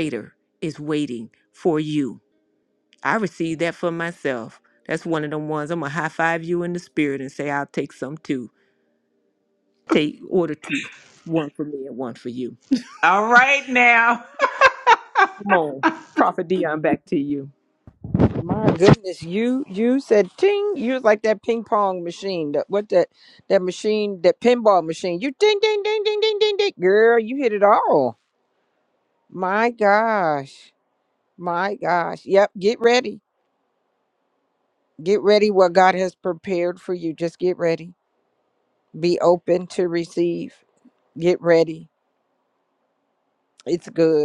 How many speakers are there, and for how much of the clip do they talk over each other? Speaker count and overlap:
3, no overlap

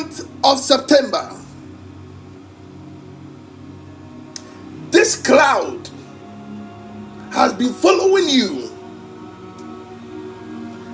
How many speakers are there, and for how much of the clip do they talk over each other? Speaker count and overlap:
1, no overlap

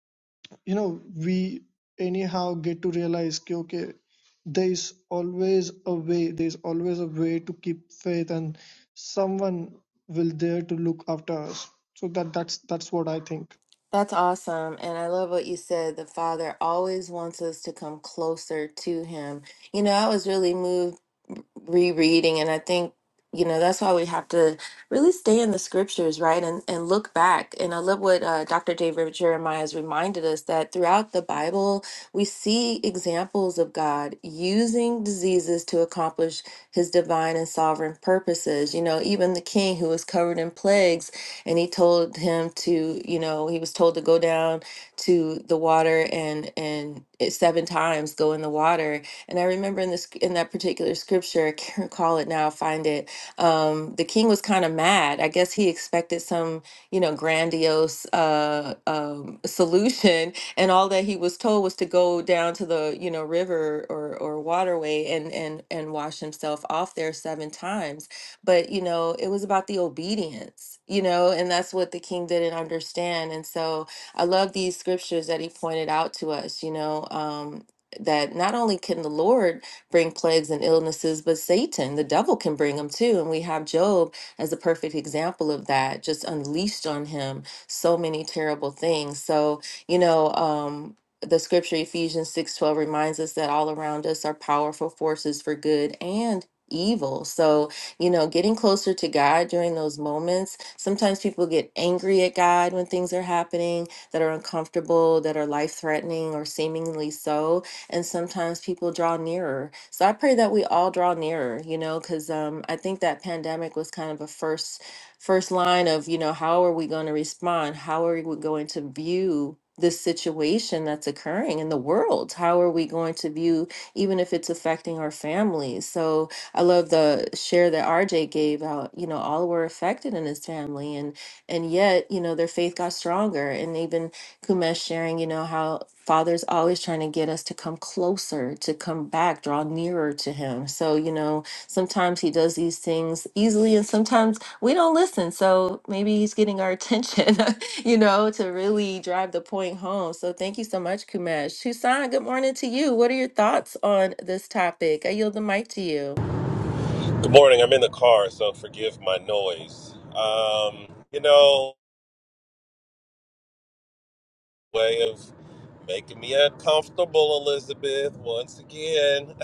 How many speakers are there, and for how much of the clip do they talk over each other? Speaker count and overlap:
3, no overlap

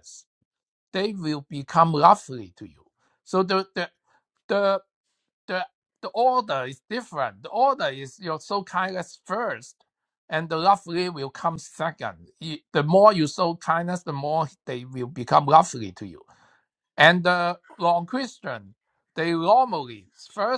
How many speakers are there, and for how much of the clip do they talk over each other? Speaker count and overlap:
1, no overlap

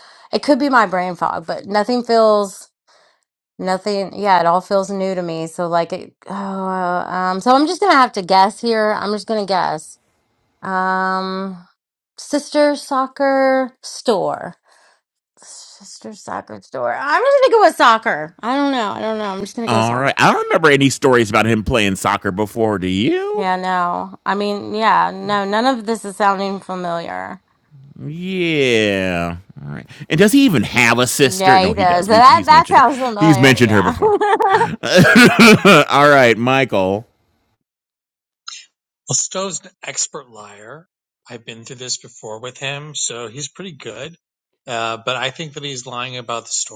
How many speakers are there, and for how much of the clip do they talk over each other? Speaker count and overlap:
3, about 6%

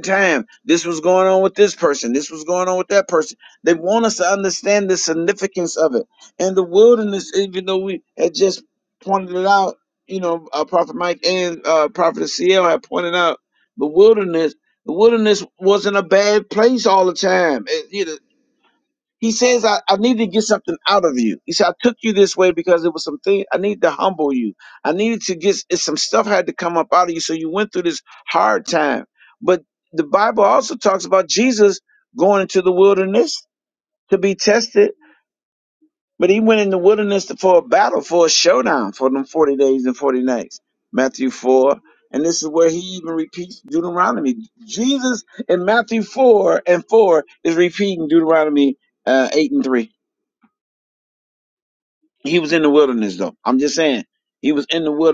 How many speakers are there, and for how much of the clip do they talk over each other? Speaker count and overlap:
1, no overlap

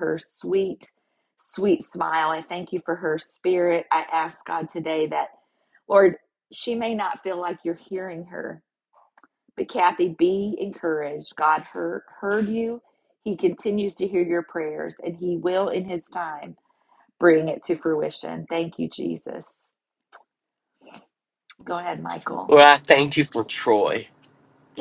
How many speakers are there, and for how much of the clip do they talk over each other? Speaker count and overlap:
2, under 1%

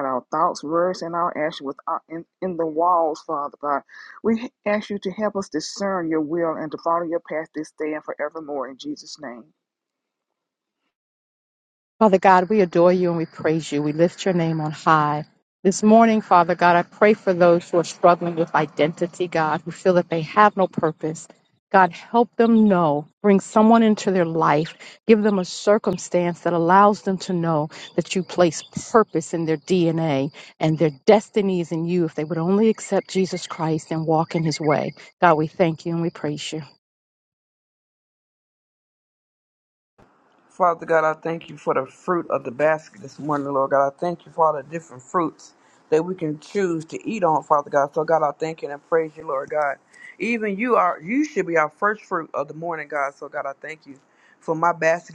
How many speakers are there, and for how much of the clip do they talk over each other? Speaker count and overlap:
3, no overlap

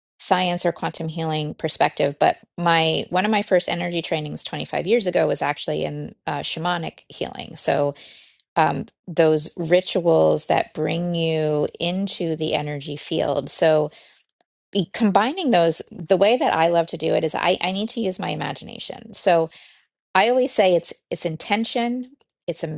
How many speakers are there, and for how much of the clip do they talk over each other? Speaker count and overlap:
1, no overlap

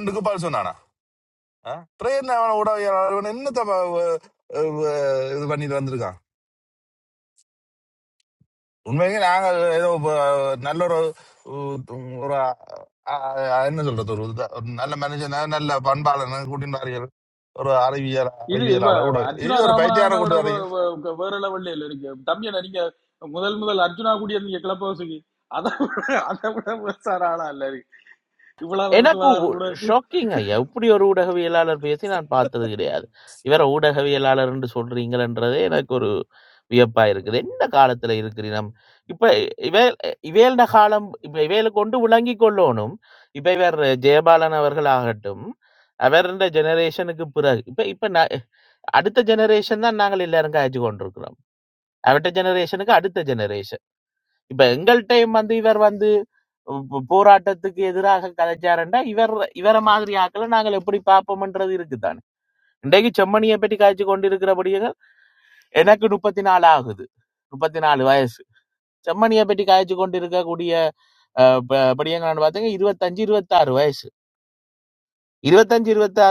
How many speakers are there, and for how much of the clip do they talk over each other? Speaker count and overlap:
3, about 3%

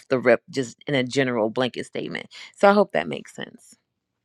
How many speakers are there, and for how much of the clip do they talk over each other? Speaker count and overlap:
1, no overlap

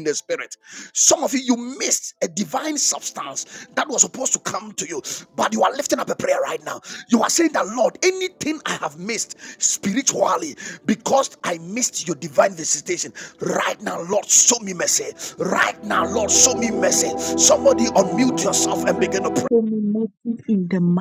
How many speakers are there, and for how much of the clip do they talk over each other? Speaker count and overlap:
2, about 1%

